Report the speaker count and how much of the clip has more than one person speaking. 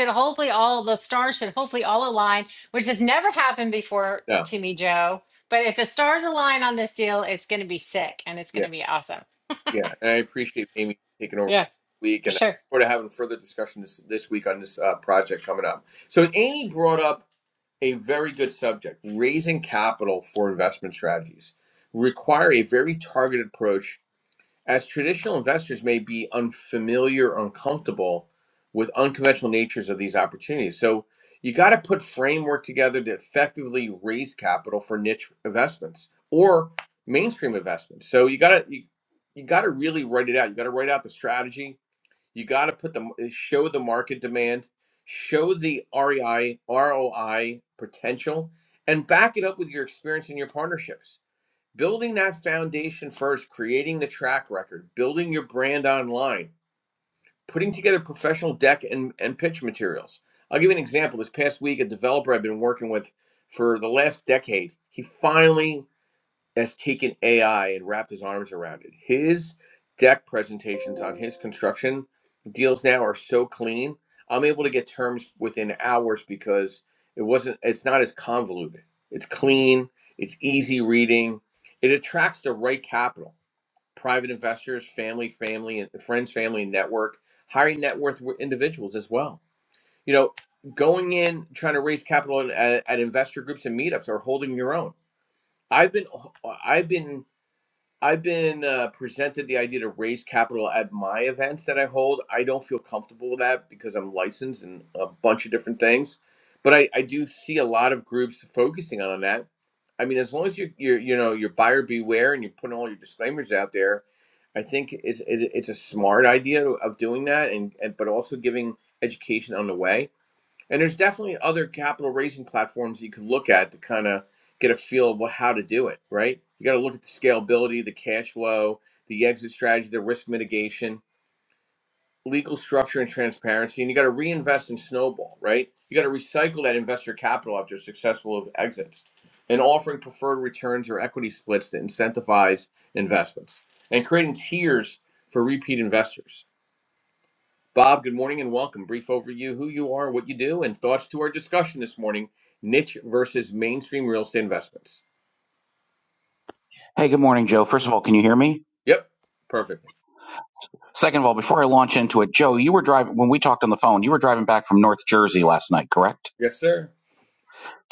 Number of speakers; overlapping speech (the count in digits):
3, under 1%